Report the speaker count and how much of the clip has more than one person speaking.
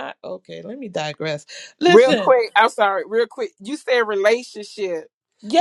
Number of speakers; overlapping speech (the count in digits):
2, about 8%